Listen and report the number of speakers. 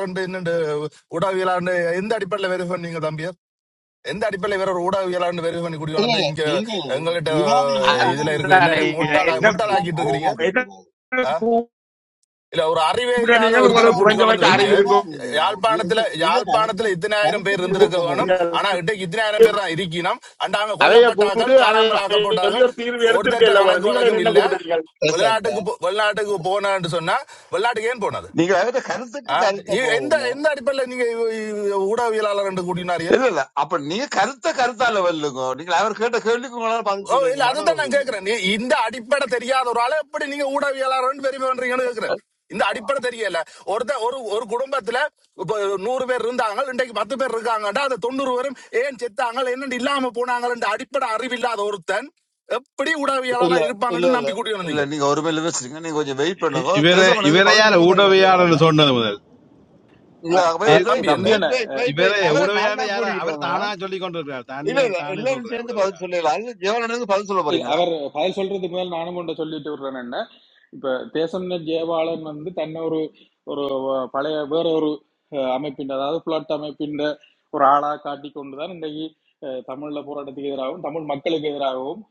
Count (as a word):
five